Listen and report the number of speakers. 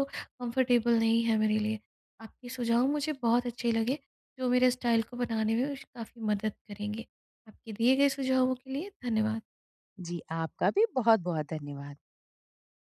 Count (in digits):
2